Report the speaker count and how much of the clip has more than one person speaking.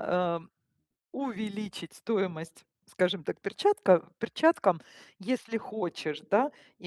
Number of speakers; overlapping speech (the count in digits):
1, no overlap